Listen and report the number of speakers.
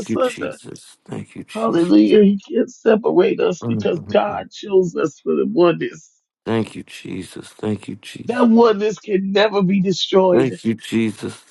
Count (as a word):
two